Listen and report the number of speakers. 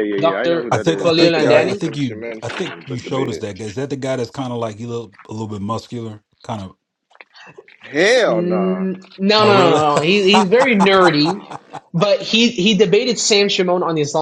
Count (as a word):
three